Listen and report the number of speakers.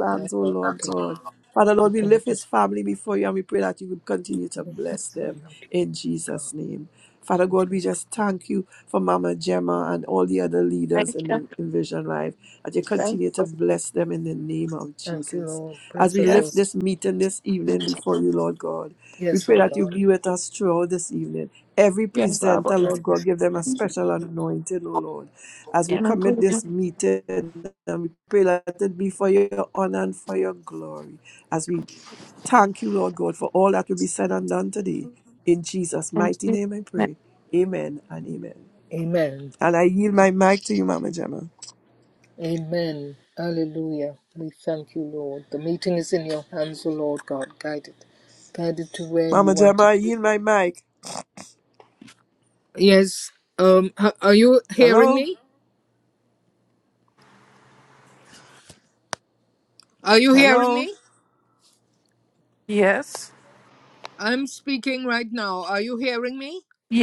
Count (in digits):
3